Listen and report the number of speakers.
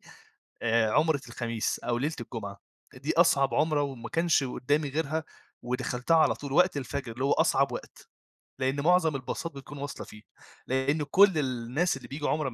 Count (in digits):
1